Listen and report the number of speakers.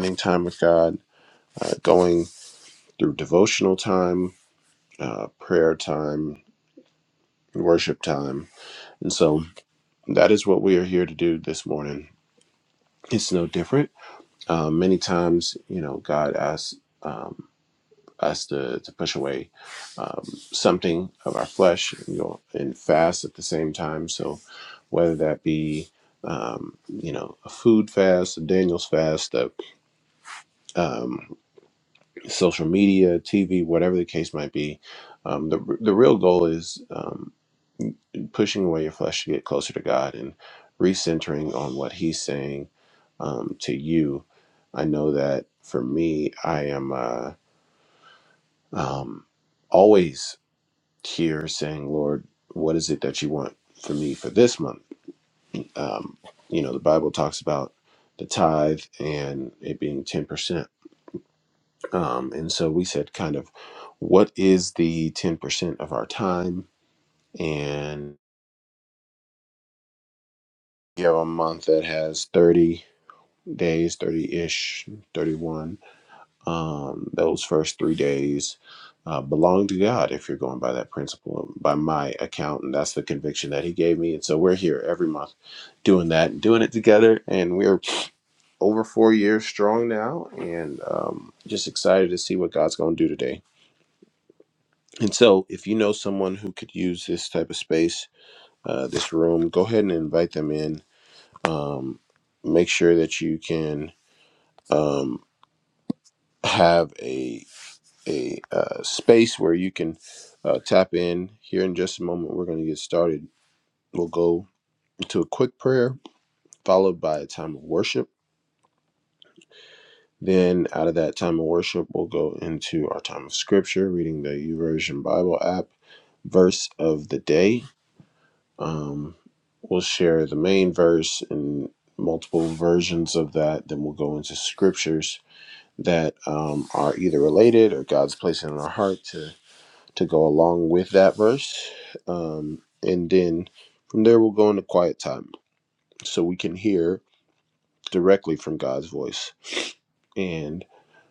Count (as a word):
one